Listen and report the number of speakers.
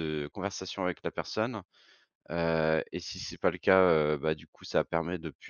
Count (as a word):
one